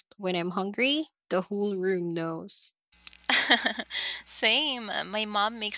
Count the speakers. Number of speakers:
2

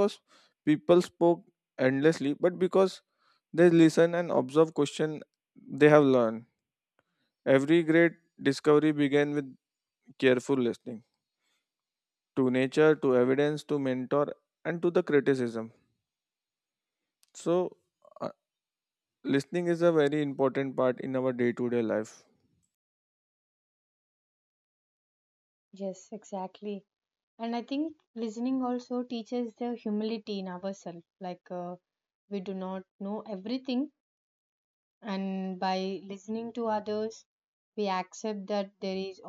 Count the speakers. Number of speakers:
2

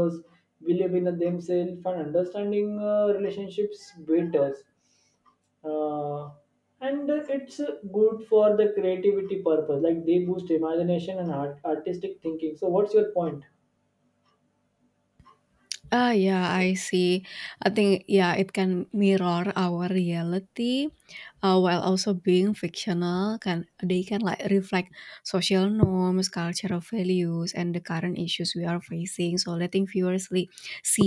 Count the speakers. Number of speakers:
2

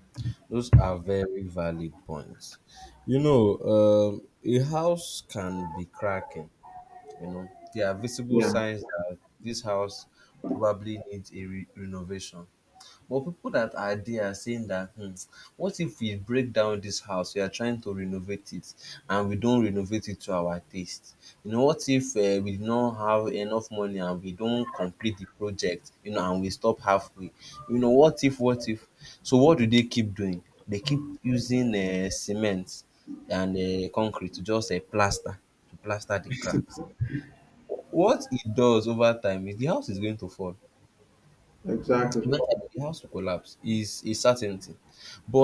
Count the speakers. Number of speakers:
2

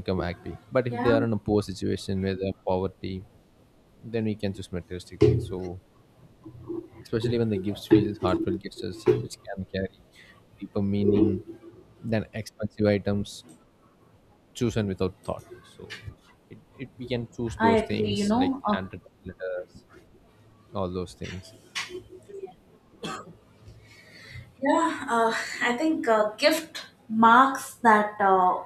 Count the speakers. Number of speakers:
2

